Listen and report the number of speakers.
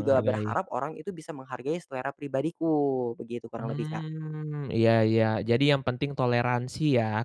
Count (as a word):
two